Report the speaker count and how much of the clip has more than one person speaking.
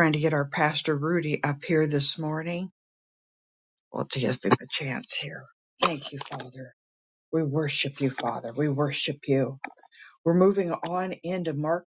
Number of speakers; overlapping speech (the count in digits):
1, no overlap